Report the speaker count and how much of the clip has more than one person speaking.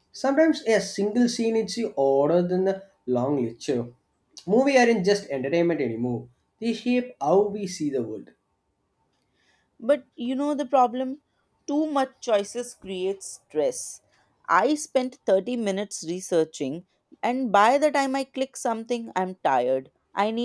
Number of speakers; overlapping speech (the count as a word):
two, no overlap